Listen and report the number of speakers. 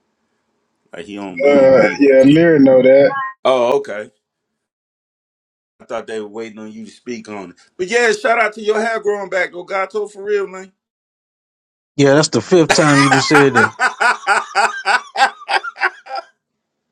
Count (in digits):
3